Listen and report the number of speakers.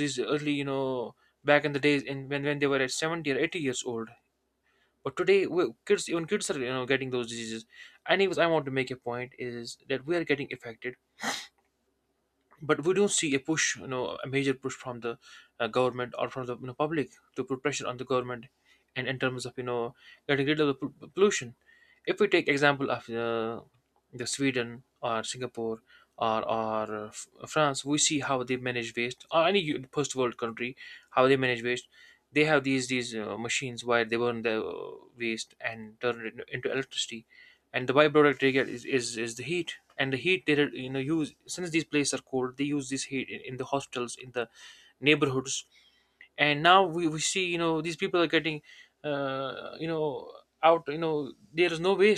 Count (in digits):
1